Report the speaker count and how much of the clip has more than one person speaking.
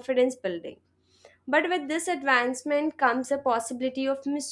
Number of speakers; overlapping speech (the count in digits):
1, no overlap